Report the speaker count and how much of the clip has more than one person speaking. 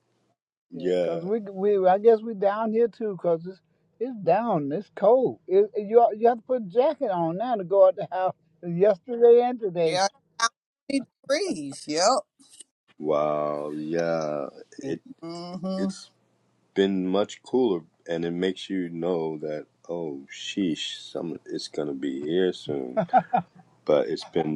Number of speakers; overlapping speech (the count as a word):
three, about 4%